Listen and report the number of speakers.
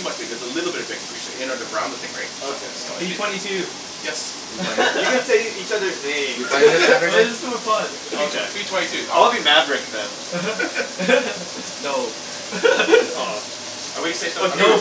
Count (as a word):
four